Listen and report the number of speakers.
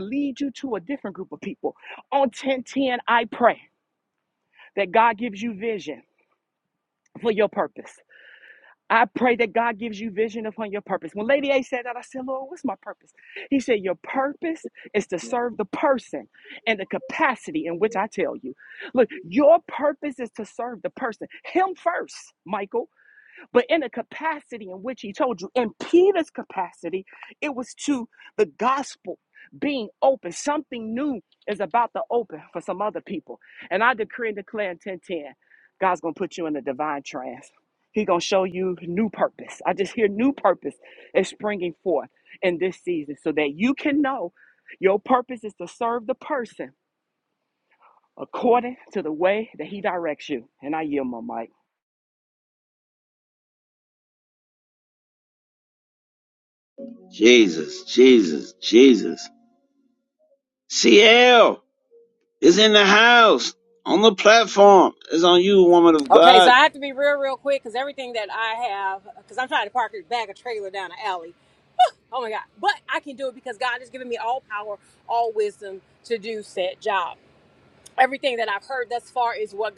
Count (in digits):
3